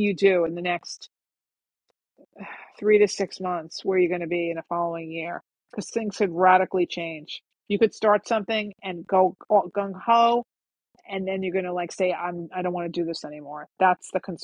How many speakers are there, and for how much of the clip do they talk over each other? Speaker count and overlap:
1, no overlap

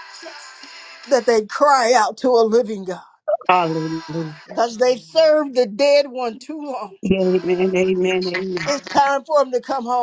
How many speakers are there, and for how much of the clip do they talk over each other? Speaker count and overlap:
2, no overlap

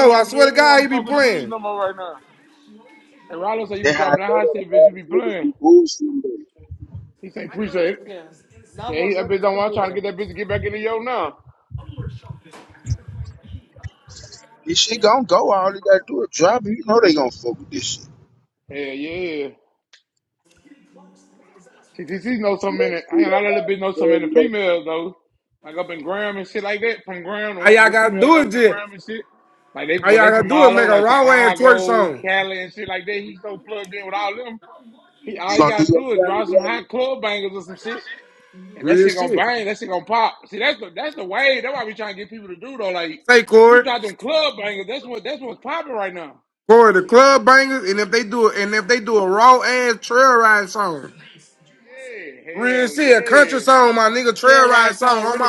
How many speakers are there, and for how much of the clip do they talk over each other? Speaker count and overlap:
3, about 21%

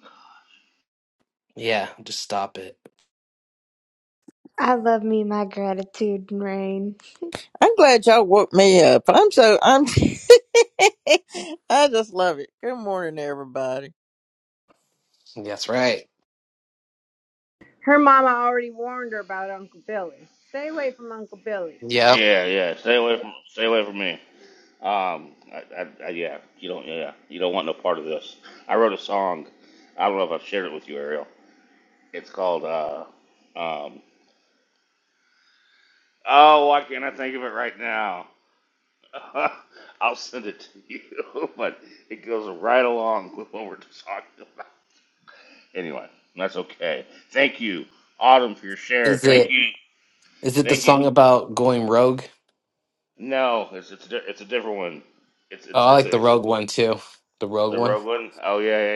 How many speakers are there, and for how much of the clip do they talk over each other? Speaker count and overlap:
5, about 3%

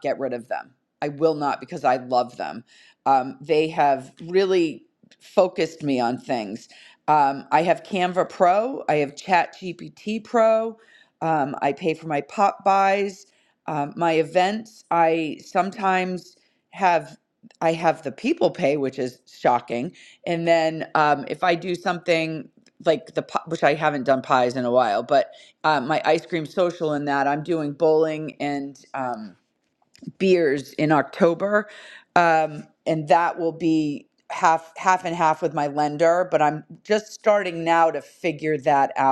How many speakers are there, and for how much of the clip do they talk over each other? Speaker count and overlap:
1, no overlap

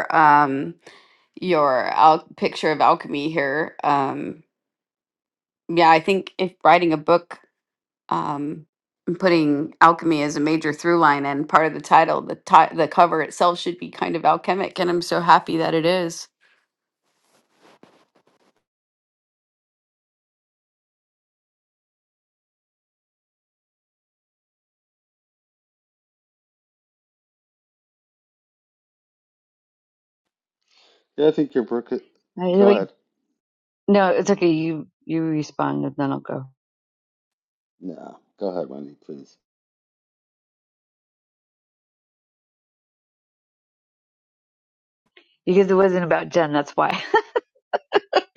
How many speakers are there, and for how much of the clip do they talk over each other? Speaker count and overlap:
3, about 1%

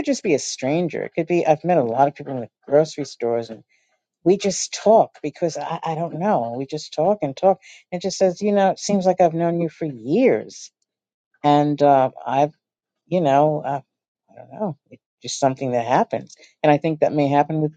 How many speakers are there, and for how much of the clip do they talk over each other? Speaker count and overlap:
1, no overlap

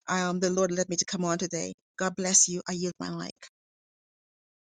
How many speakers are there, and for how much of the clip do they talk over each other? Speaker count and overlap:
1, no overlap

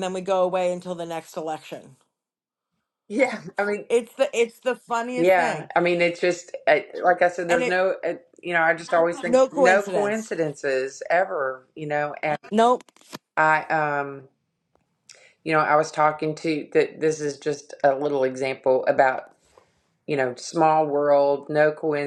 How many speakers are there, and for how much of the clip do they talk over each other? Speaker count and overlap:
2, about 7%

